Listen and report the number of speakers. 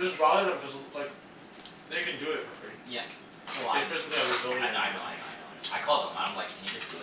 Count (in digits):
2